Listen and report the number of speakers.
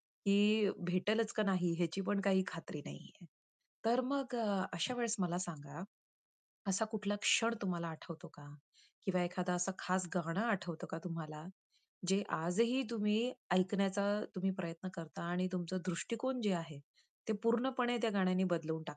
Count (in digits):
1